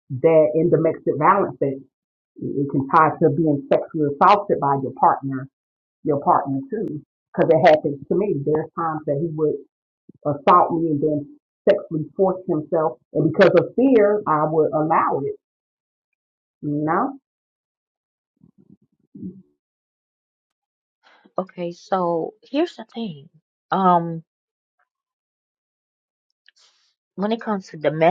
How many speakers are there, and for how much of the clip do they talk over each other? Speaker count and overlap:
2, no overlap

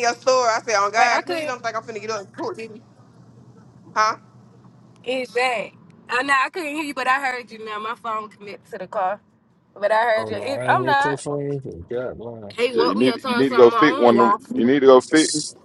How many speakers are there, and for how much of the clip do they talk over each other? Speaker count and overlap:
4, about 21%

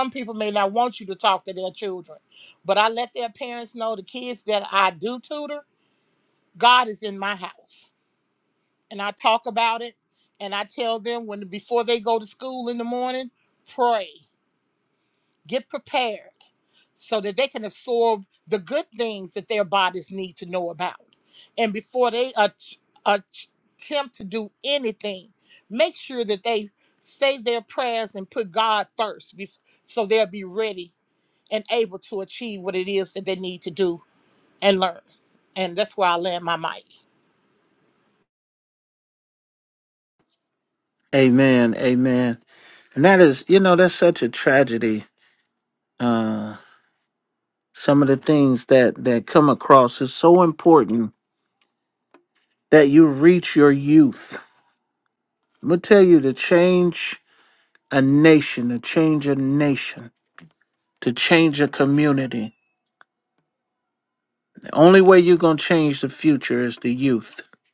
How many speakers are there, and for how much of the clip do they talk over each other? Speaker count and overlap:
2, no overlap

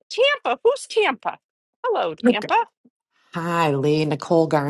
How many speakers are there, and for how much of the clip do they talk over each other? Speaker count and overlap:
2, about 6%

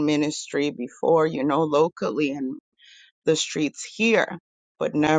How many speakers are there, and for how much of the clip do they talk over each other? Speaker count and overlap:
1, no overlap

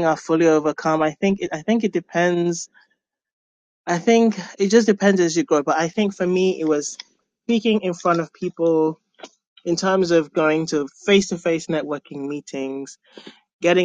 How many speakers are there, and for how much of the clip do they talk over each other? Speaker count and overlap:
1, no overlap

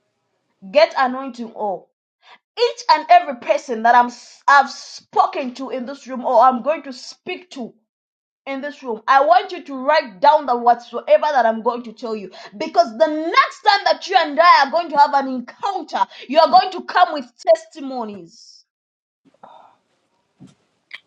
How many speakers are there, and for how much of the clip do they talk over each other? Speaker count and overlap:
1, no overlap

